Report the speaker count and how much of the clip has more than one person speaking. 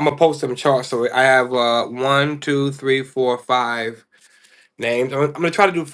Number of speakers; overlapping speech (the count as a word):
one, no overlap